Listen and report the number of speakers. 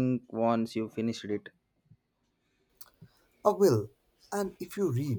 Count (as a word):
two